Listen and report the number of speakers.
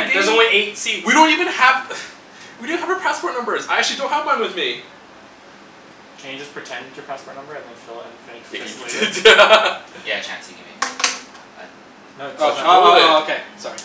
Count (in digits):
4